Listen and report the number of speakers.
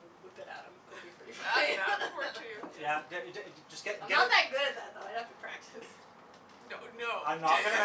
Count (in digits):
3